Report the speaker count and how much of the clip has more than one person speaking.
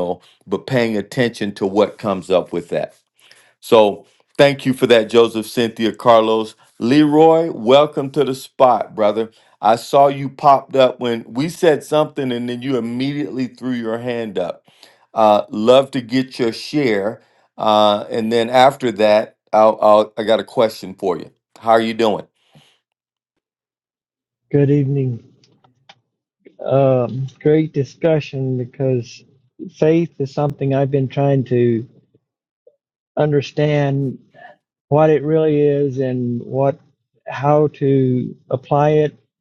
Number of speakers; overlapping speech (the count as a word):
two, no overlap